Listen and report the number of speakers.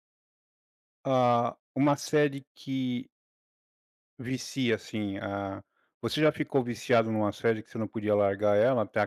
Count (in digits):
1